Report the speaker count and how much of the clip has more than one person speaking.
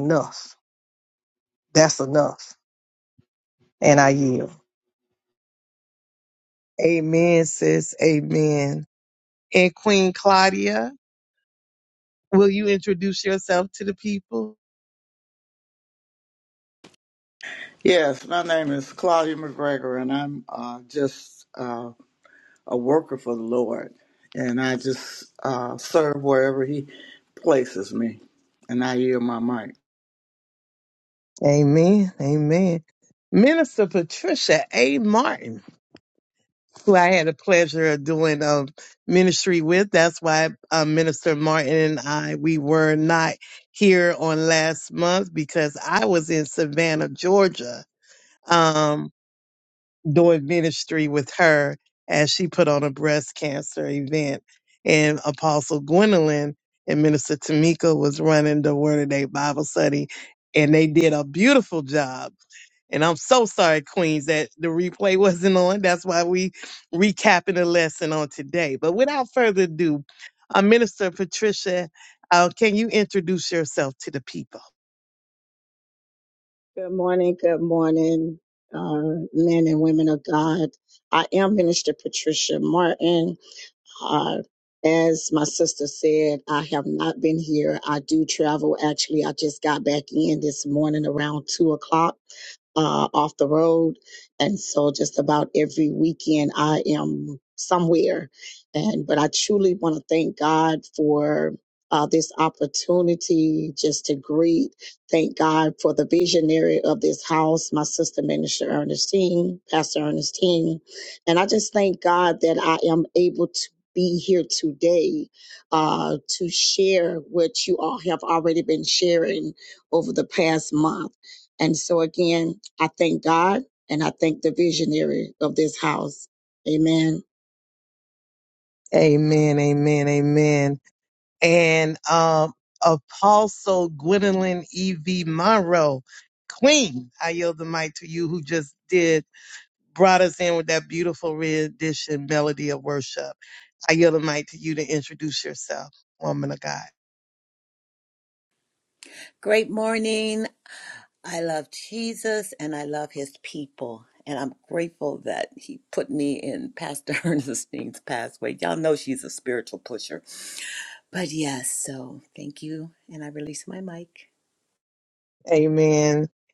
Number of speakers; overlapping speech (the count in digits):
5, no overlap